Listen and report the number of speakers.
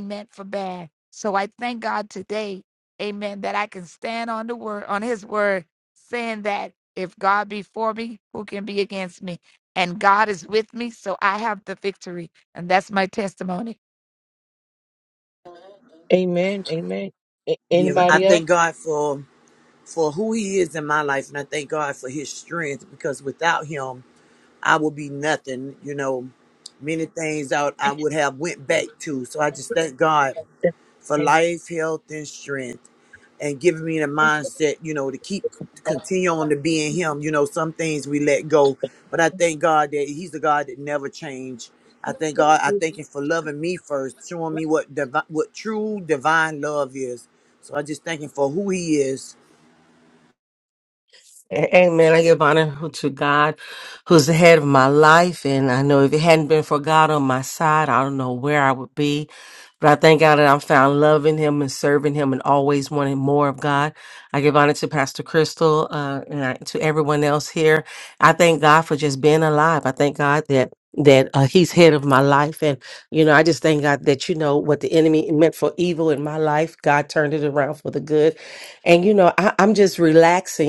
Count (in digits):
4